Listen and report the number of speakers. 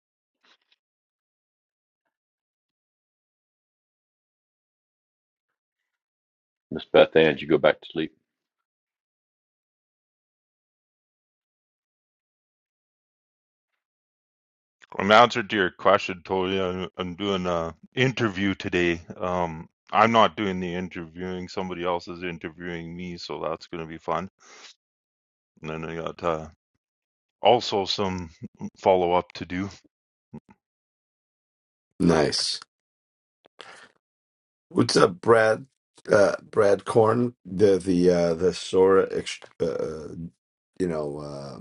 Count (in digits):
3